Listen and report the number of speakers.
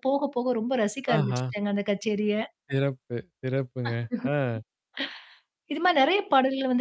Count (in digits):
2